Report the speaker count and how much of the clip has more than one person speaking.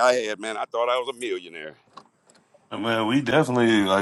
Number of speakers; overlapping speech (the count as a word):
two, no overlap